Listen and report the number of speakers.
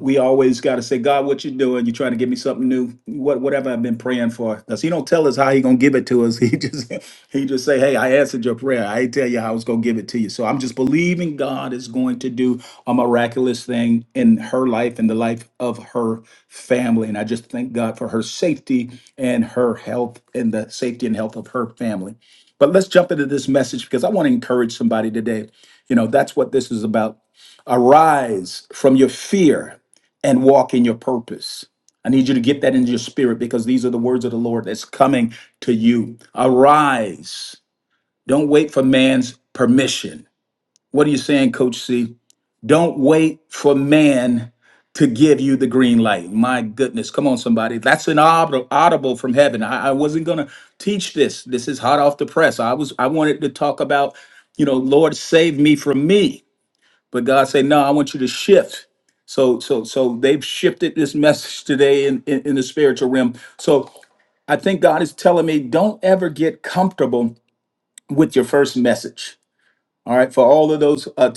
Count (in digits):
1